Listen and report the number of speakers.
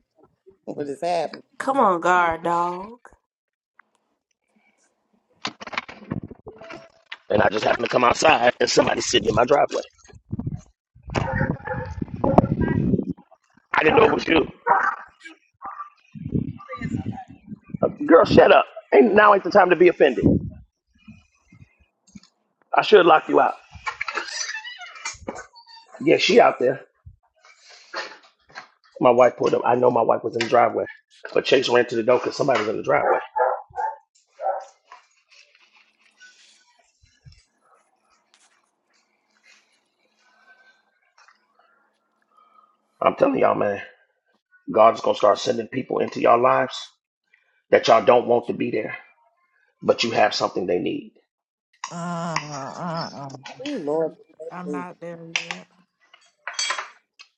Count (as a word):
four